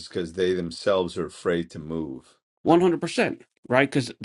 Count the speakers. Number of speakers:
two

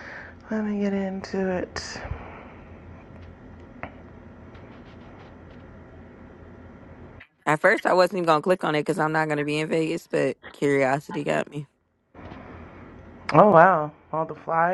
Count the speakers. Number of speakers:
two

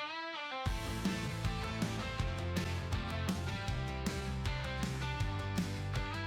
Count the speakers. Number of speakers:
zero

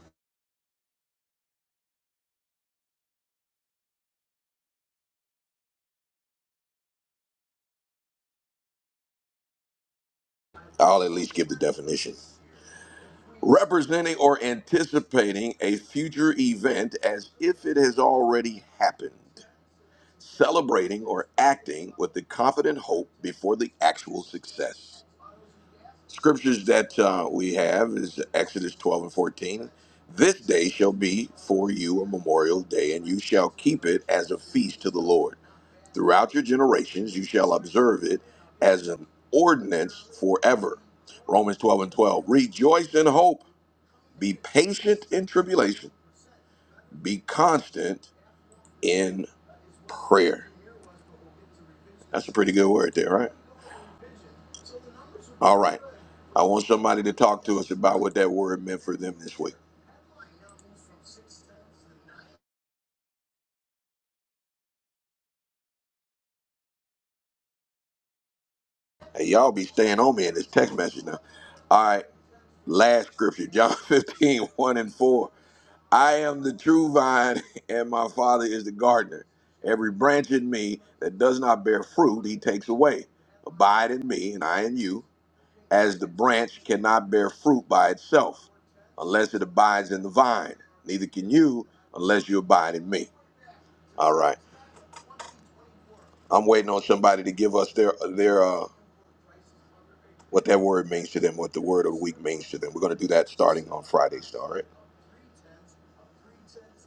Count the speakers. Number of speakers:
one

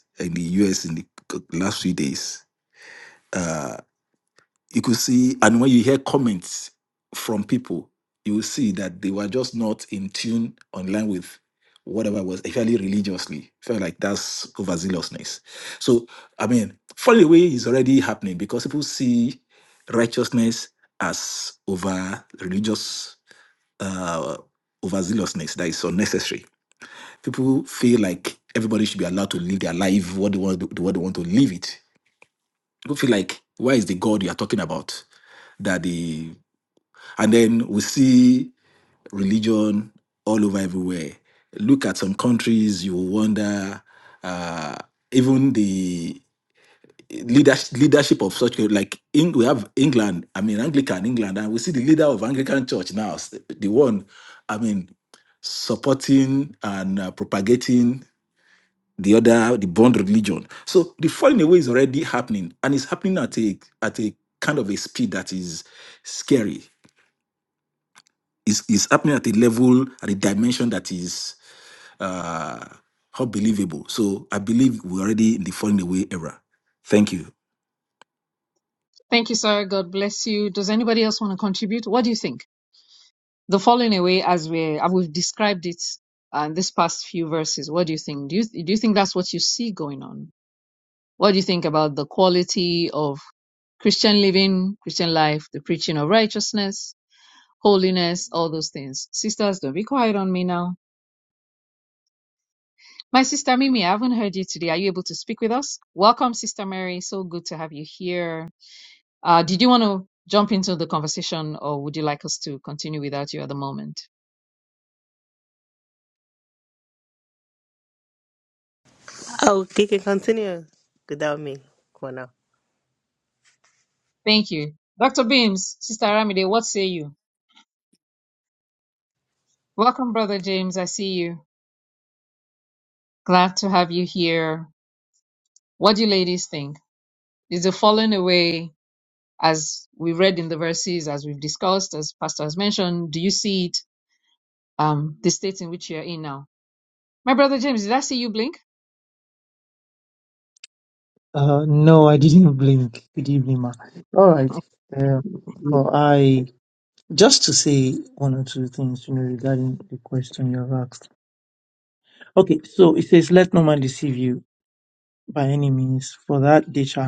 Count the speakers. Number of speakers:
four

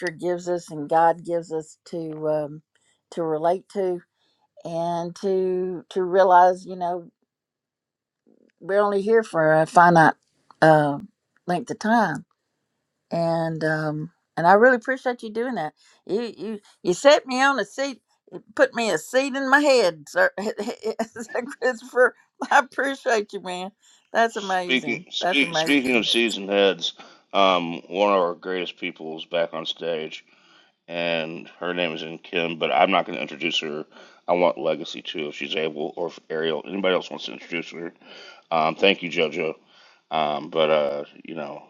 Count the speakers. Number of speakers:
two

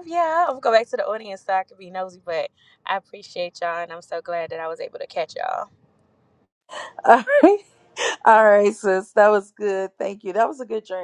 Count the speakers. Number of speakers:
two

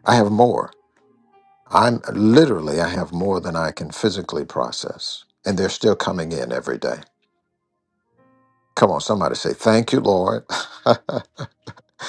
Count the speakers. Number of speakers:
one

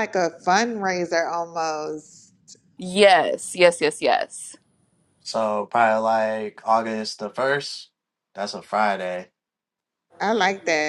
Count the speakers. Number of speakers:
three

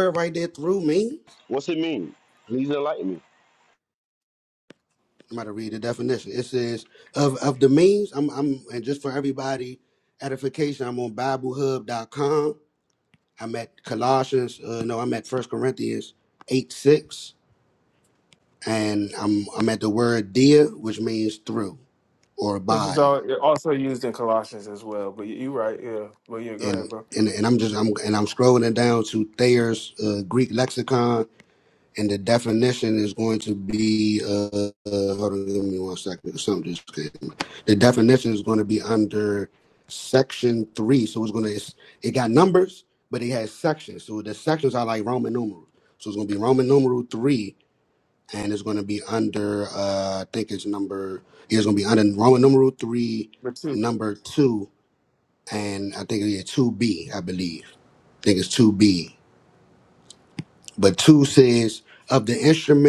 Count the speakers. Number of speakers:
three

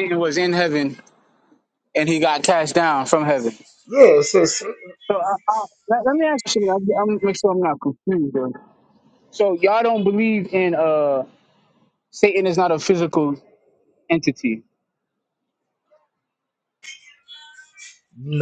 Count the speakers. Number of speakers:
two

